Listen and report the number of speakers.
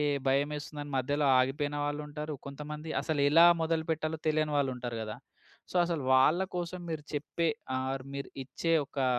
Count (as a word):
one